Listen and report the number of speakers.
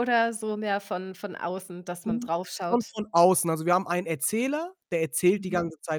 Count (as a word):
two